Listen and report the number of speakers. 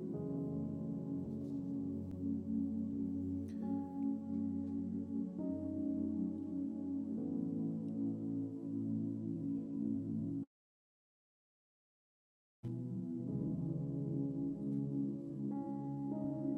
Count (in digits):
0